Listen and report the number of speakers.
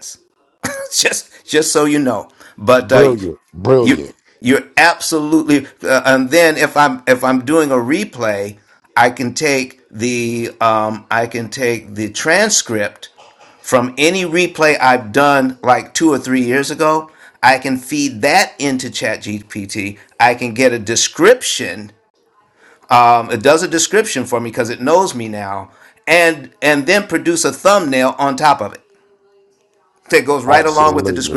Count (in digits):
2